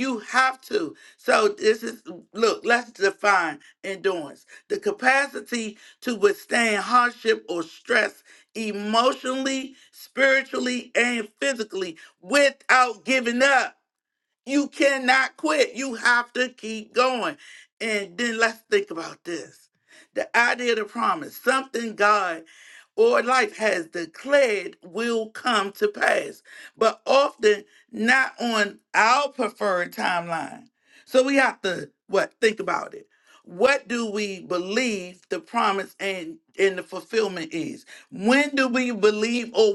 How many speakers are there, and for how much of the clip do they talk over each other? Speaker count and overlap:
one, no overlap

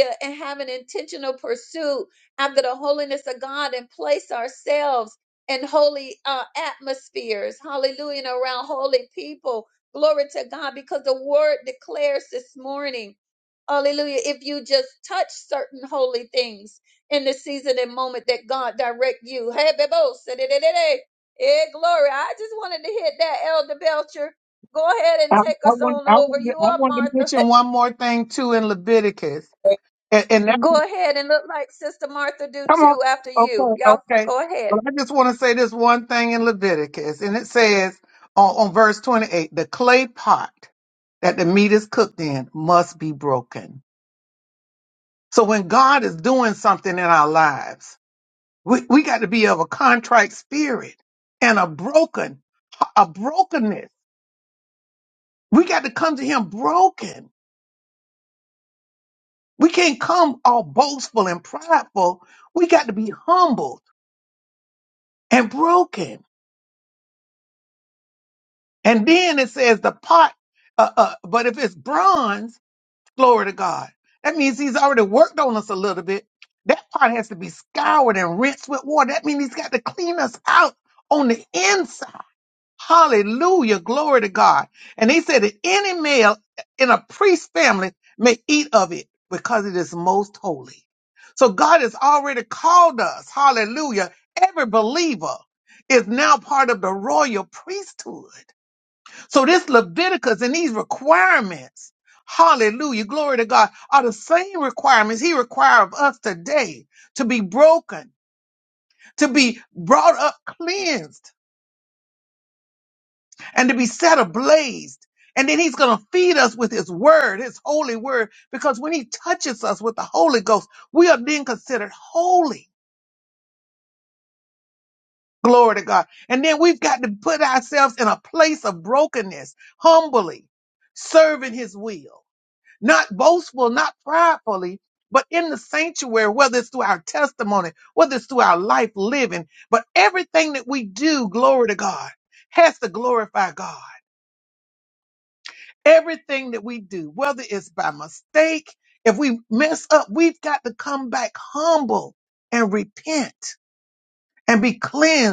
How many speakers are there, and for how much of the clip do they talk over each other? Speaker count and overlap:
two, about 2%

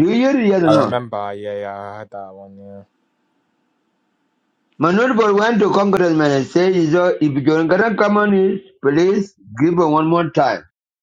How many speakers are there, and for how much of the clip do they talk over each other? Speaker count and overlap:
two, about 3%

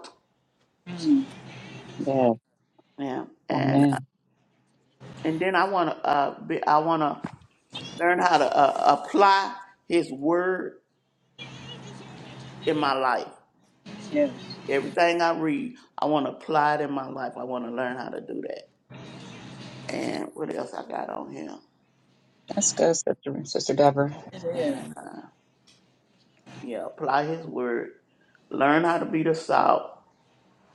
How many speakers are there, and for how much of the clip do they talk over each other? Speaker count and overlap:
three, about 3%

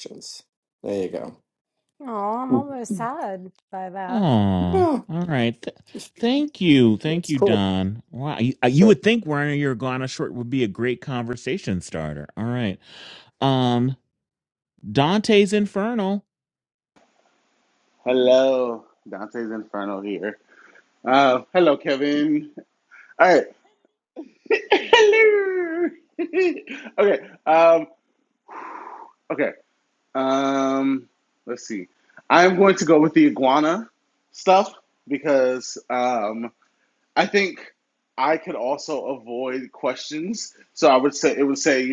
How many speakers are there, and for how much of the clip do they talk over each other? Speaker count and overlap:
four, about 3%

